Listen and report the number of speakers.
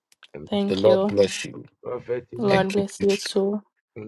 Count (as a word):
three